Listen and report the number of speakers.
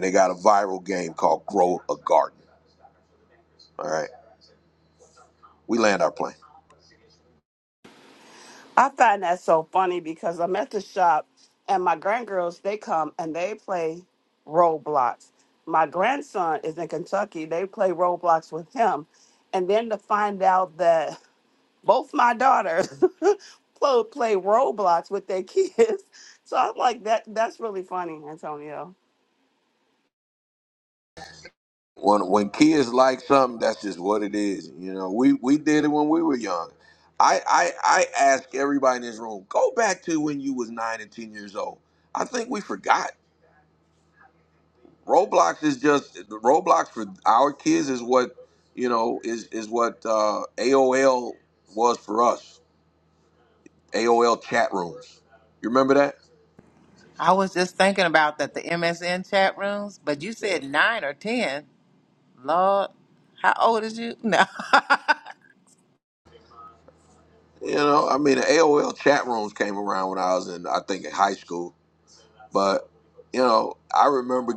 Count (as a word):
three